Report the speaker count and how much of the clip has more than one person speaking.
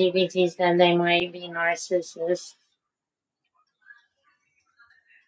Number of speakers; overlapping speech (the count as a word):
one, no overlap